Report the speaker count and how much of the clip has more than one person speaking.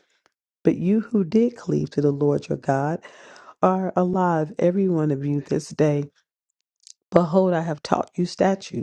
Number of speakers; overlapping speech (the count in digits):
1, no overlap